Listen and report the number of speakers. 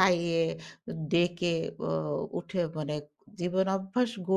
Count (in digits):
1